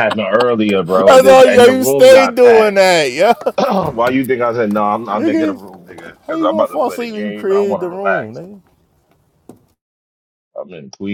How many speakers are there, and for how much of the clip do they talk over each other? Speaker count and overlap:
2, about 38%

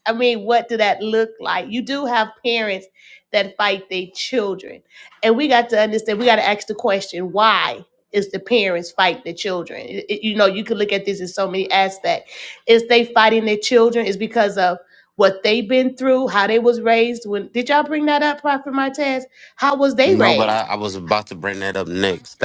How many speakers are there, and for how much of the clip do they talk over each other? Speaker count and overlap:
2, about 2%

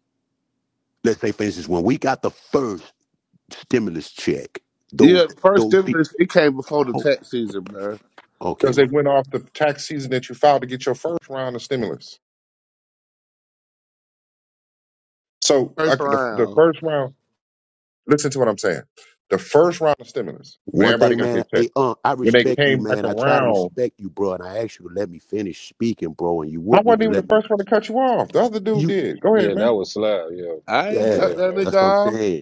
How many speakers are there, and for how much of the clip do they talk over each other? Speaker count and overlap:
4, about 20%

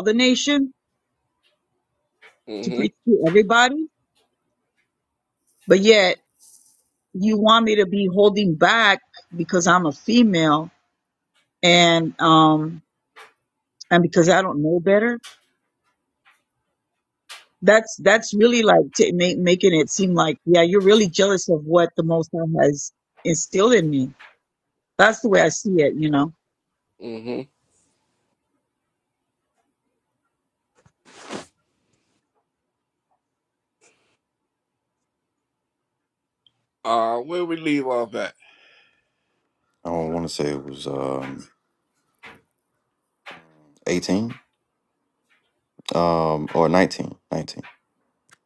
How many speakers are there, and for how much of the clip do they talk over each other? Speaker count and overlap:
3, no overlap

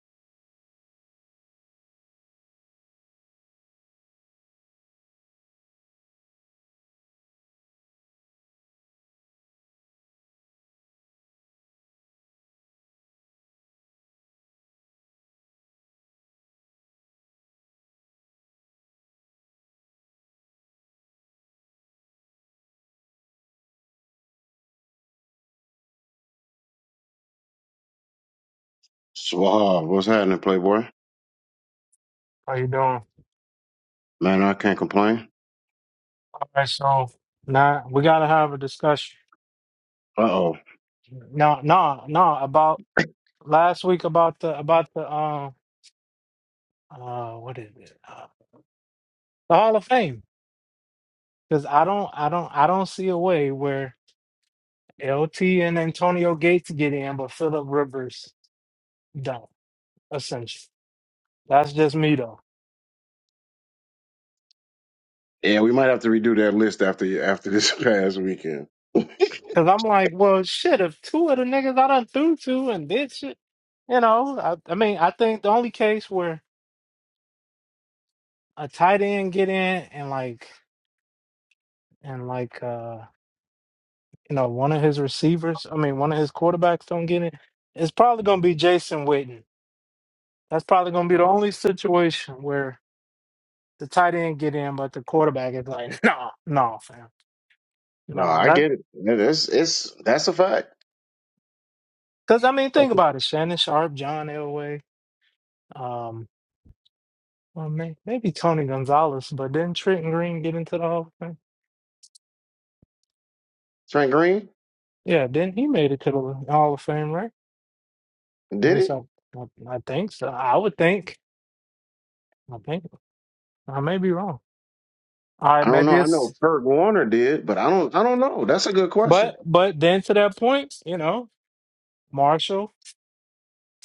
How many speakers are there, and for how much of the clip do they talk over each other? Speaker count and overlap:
2, about 1%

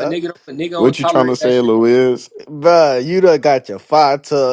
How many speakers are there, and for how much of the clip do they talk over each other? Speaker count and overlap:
3, about 24%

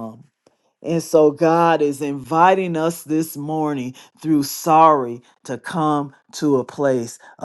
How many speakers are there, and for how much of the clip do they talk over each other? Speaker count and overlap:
1, no overlap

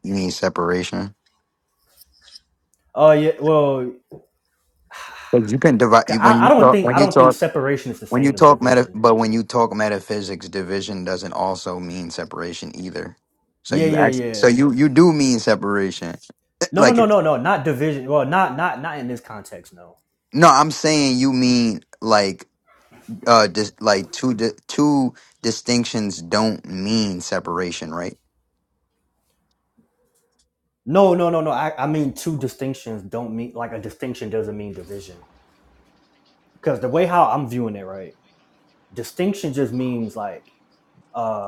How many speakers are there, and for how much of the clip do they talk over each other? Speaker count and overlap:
2, about 8%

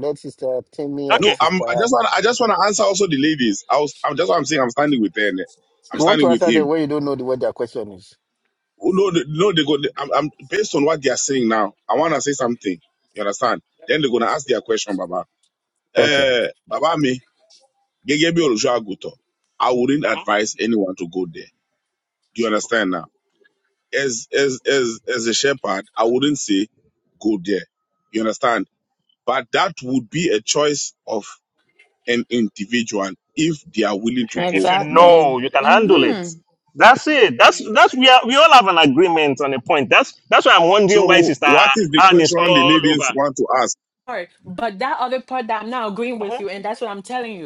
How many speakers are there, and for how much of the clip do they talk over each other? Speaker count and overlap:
4, about 12%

